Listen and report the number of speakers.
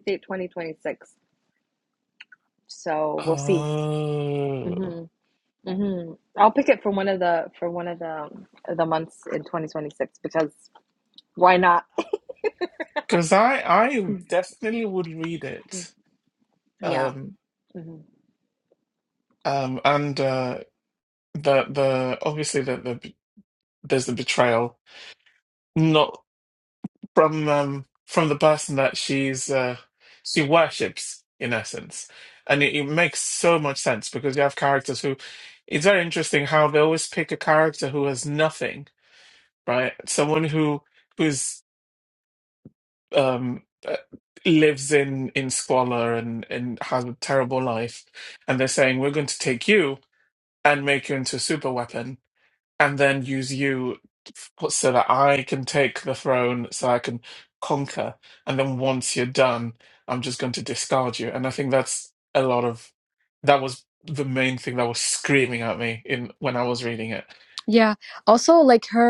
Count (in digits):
3